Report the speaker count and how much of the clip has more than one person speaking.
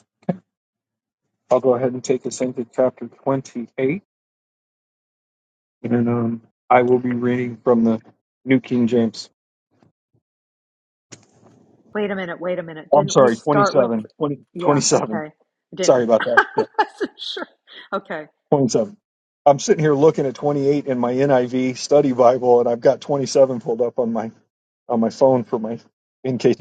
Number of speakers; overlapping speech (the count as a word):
two, about 9%